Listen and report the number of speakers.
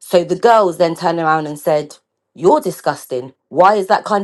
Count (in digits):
1